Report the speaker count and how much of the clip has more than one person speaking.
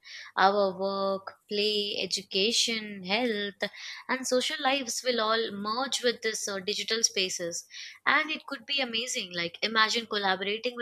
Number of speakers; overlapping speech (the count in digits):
1, no overlap